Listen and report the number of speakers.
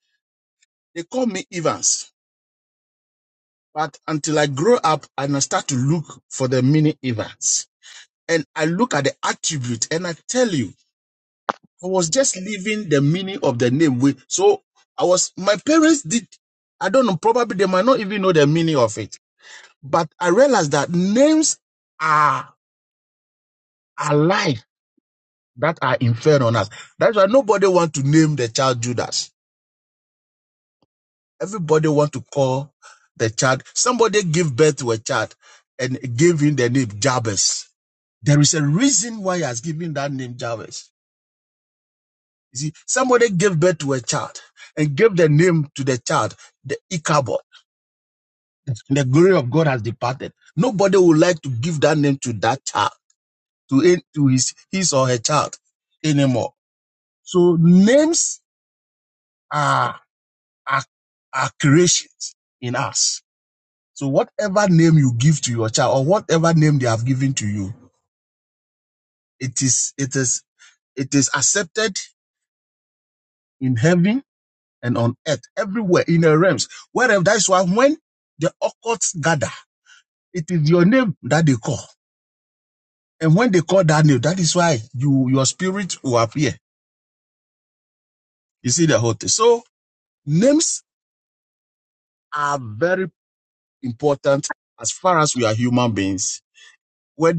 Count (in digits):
1